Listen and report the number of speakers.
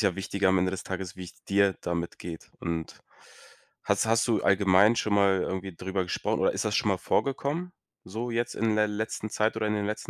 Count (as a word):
one